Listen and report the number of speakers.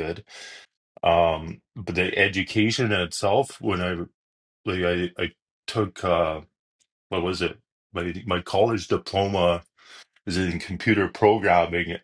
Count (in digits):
1